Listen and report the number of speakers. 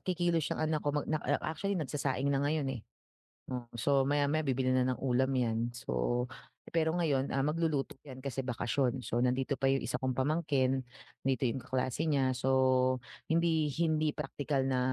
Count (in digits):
1